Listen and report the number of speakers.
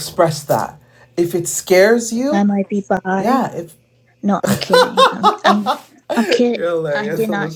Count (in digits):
2